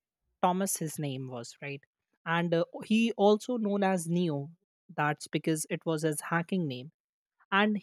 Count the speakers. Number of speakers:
1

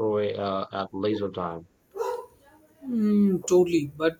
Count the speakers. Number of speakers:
2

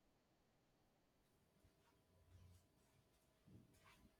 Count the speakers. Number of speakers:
0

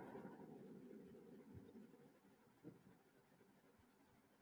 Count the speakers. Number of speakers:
0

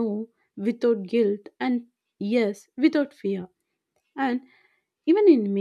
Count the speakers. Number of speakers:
1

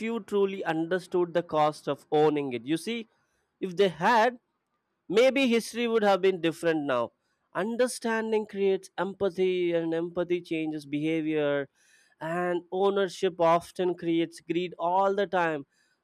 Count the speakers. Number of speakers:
1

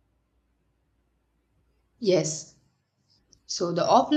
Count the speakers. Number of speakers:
1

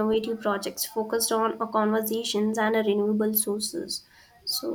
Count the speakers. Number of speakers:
1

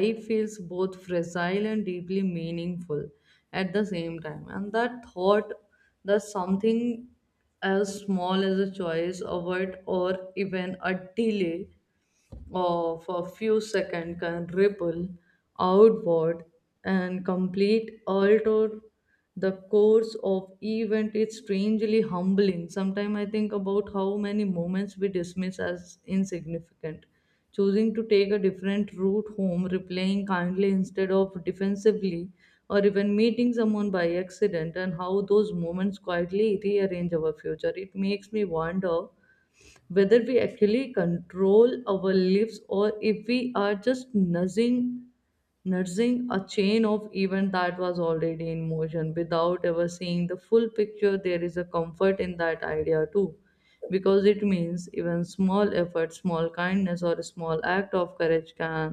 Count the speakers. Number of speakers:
1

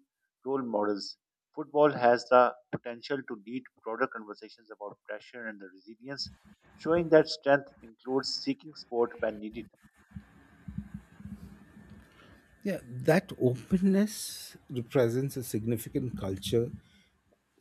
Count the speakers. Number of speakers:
2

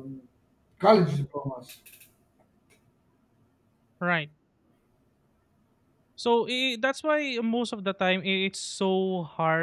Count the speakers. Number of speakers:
2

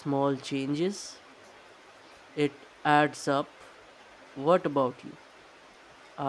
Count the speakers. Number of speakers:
1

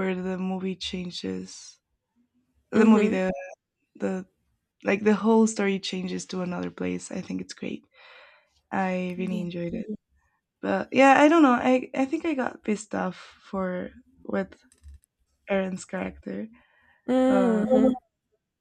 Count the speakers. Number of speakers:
2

